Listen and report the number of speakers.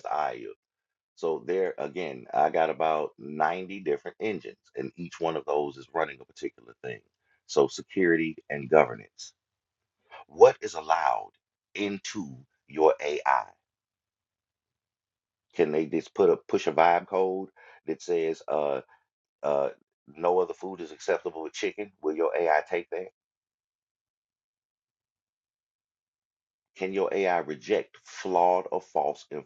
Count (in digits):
1